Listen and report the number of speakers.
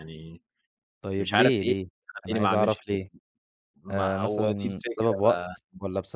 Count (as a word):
two